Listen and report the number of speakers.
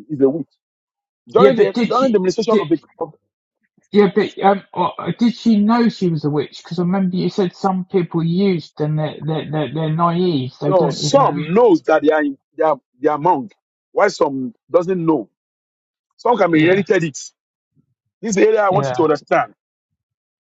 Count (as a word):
two